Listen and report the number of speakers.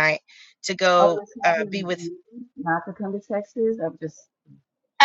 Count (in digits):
2